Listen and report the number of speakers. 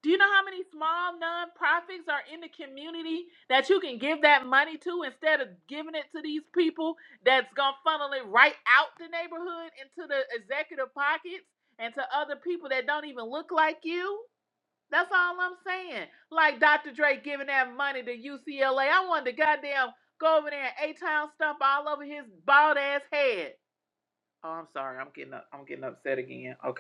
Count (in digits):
1